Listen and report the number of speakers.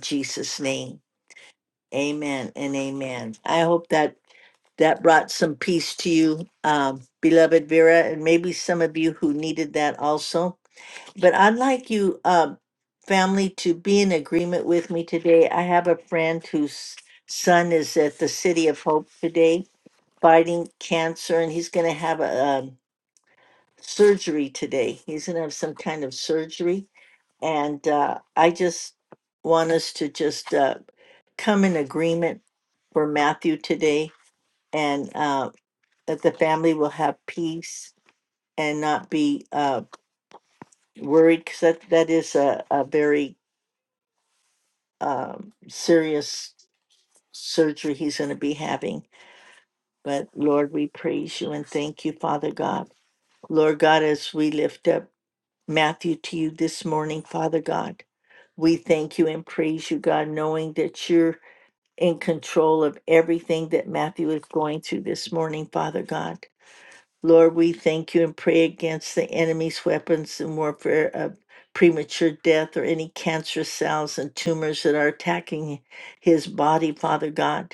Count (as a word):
one